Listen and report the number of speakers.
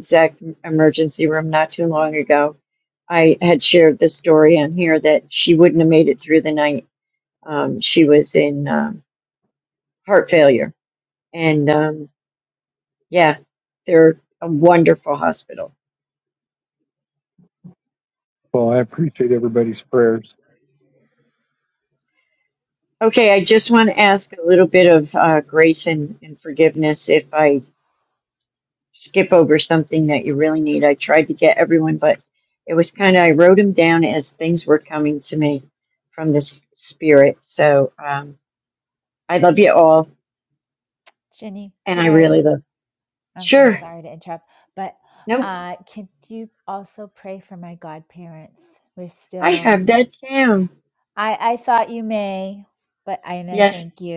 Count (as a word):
three